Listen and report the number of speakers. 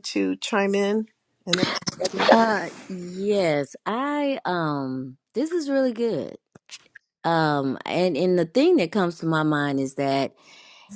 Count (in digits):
2